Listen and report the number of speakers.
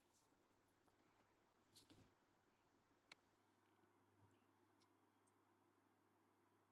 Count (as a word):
zero